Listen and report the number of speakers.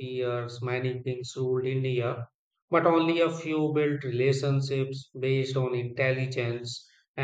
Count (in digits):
1